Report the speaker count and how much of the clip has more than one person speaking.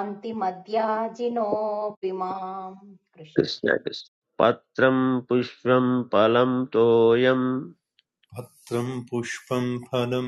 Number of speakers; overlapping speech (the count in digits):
3, no overlap